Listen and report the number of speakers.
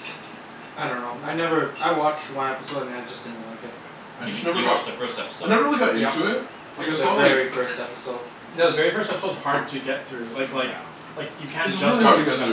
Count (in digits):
4